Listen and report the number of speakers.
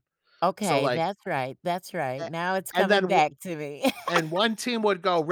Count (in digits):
2